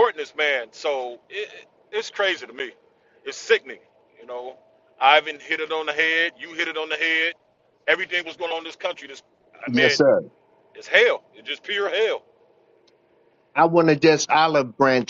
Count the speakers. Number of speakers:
2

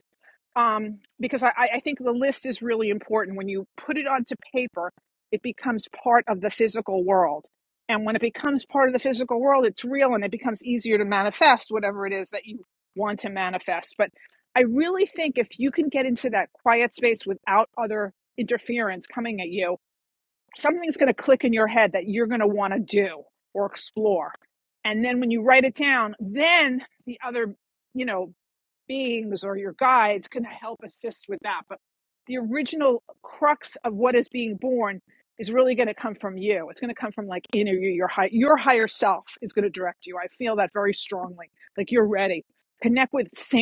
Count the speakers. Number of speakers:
1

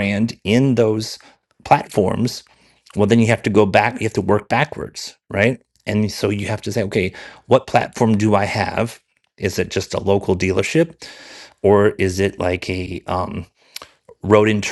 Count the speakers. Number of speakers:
1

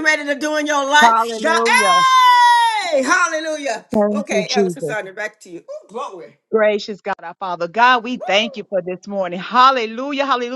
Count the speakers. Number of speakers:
2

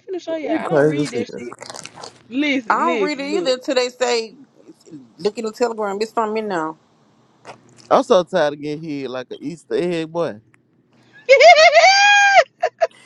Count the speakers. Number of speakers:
3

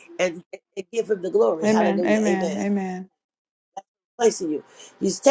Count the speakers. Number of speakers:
2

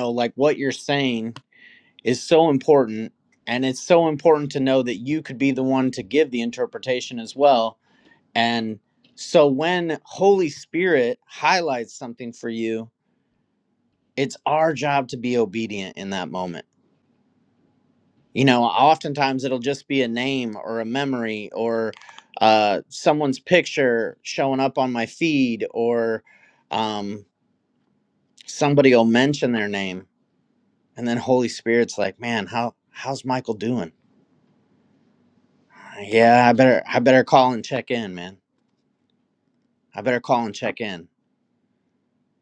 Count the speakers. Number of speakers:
1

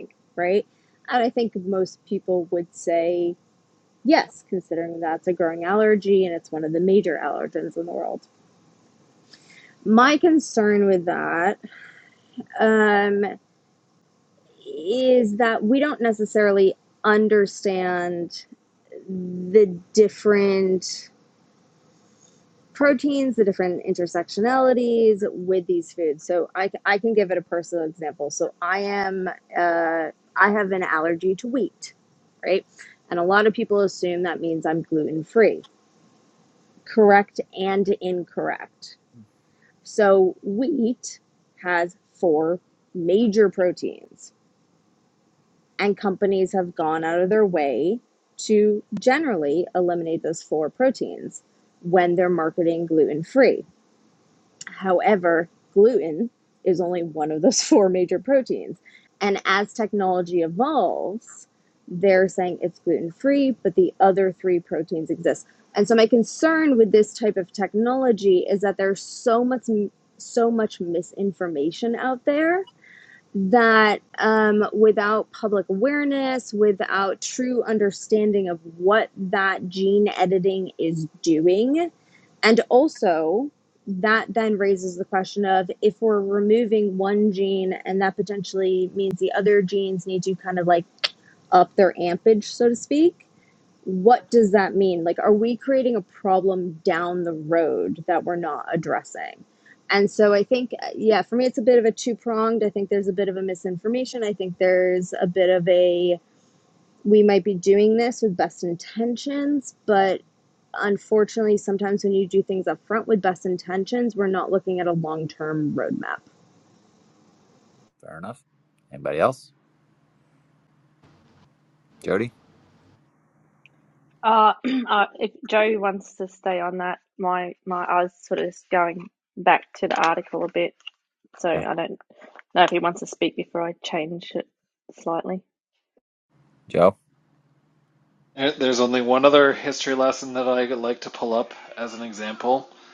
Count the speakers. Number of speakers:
4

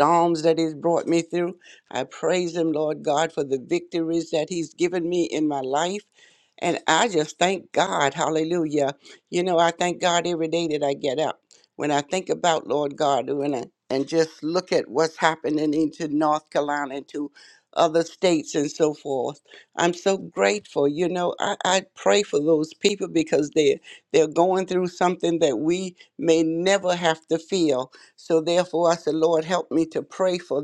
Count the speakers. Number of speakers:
1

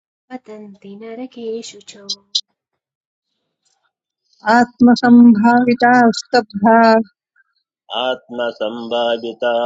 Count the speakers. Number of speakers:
3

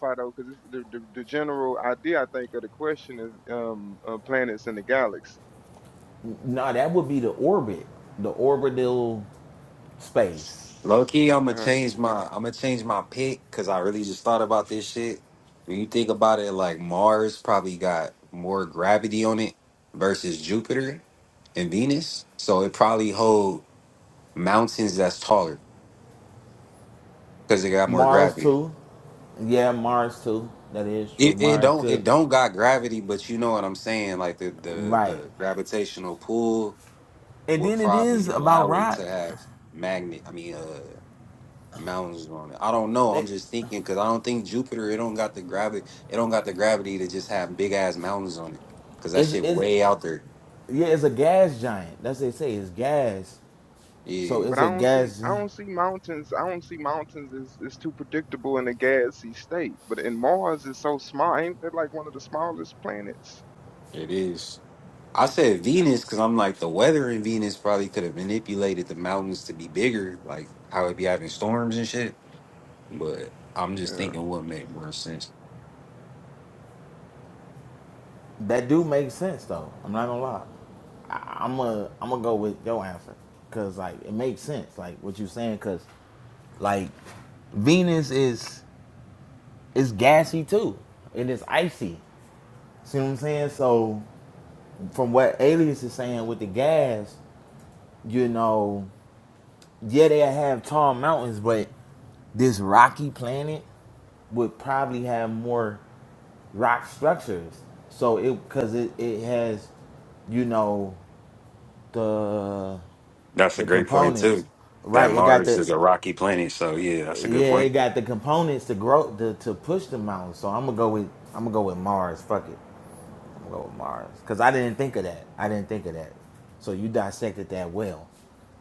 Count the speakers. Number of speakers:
3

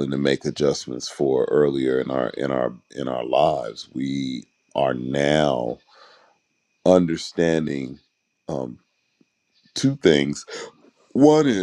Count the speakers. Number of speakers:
1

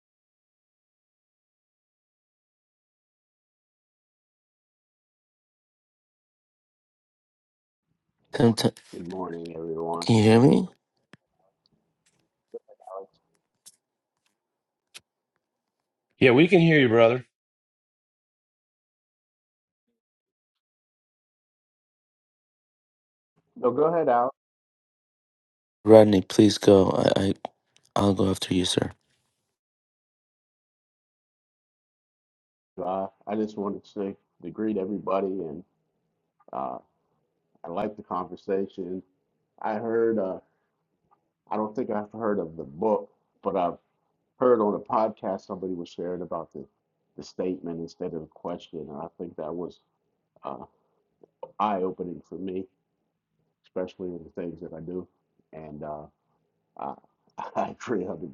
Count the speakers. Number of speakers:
3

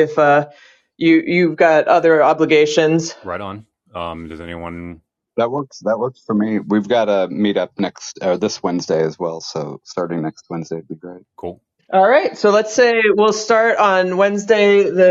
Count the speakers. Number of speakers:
3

